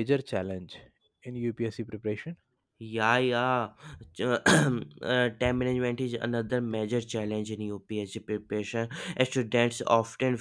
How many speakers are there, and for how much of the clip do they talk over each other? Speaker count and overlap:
2, no overlap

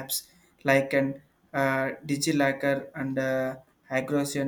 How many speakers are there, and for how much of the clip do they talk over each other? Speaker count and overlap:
1, no overlap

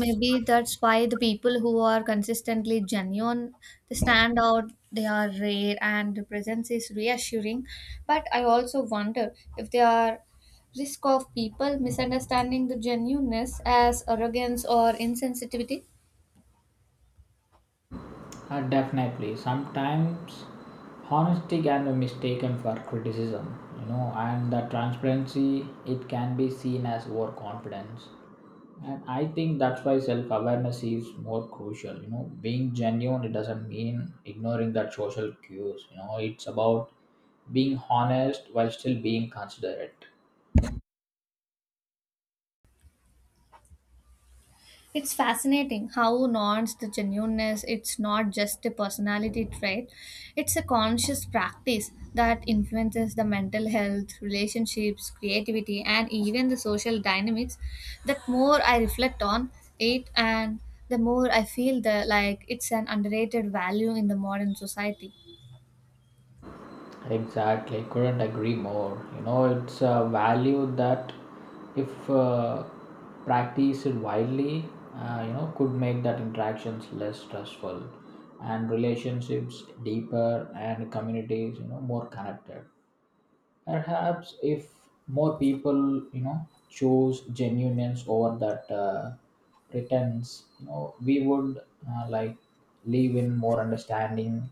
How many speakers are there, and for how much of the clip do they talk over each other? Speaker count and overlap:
2, no overlap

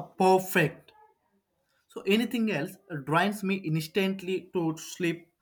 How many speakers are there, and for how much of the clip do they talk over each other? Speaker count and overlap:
1, no overlap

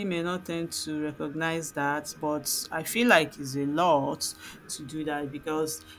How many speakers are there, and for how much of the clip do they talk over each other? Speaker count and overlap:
1, no overlap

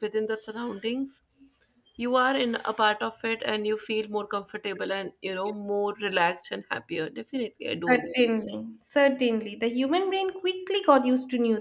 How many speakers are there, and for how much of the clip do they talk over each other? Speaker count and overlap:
2, about 4%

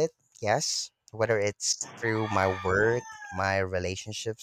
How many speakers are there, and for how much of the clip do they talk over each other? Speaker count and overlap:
1, no overlap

